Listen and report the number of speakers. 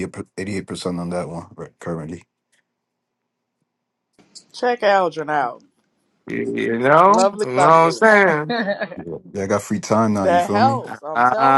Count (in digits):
3